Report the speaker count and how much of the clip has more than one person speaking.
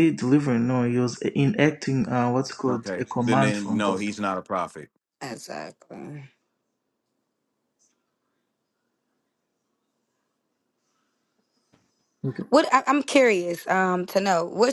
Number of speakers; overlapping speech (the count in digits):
3, about 10%